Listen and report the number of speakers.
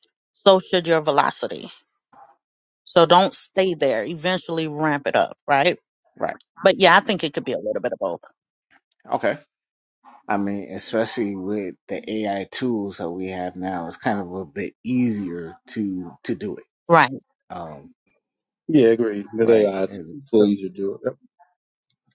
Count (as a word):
three